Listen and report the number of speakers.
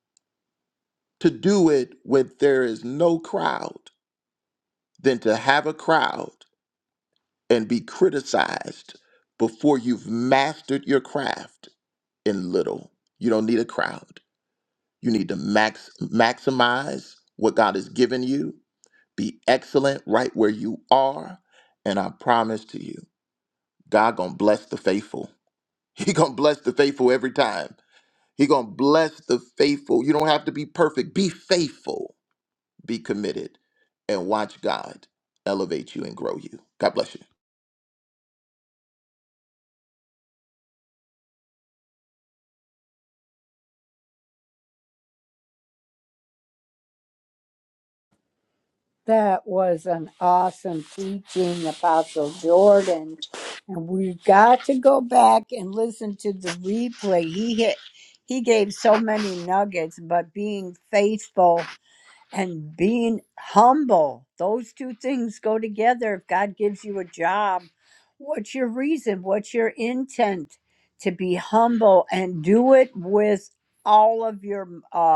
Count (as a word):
two